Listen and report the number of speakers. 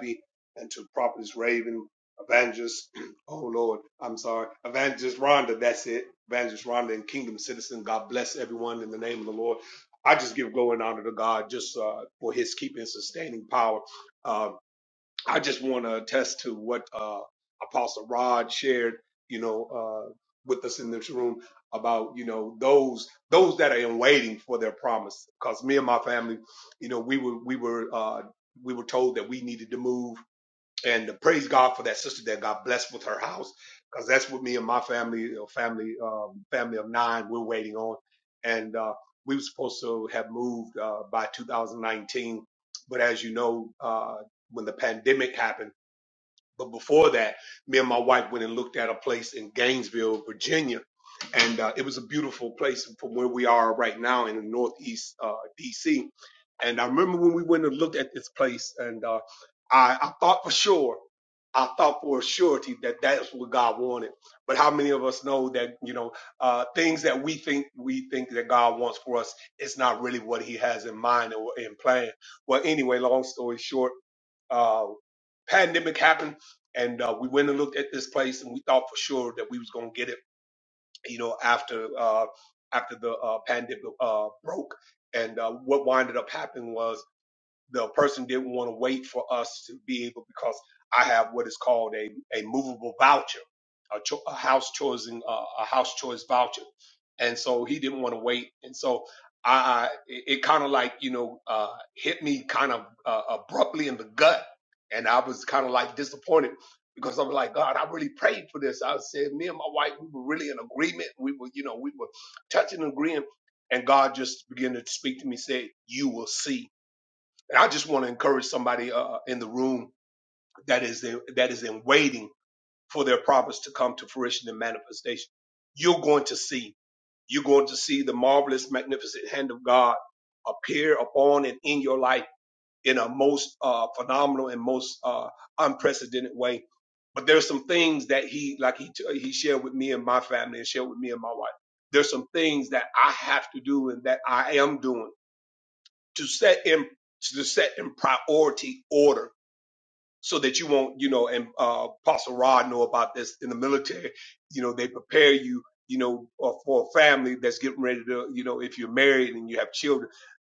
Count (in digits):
1